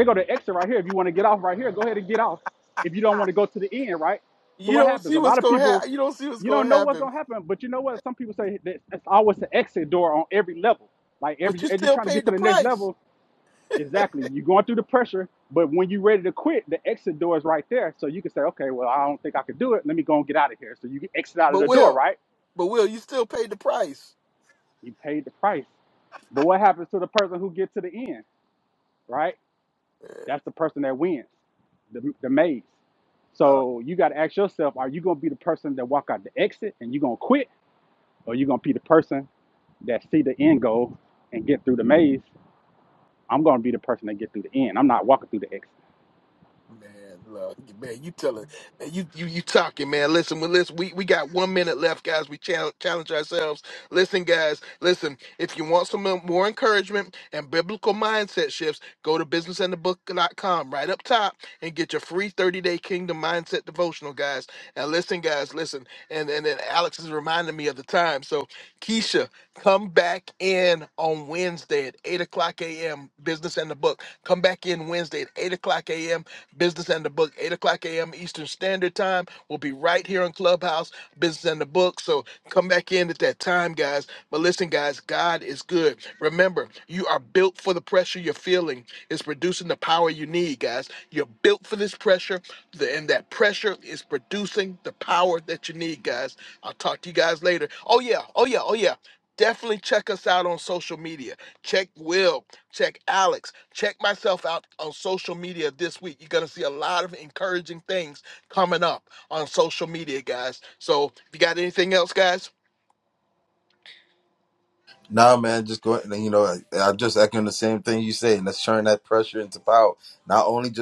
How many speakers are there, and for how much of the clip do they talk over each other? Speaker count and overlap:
three, about 3%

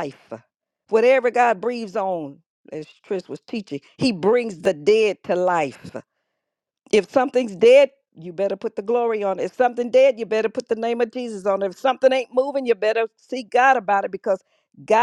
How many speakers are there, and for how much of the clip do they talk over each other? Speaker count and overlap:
one, no overlap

